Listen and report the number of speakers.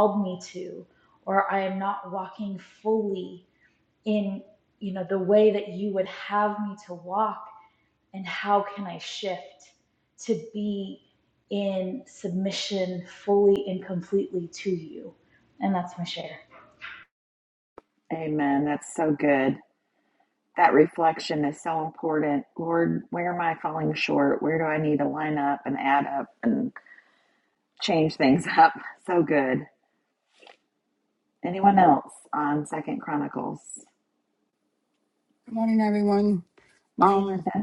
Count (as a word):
three